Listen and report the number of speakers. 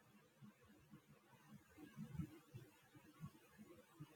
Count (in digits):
0